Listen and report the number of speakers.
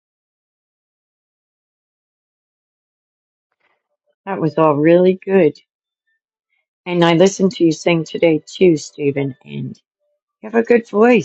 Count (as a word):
one